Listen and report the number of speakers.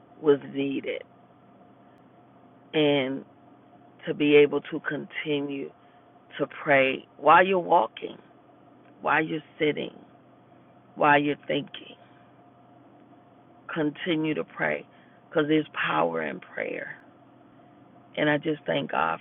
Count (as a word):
one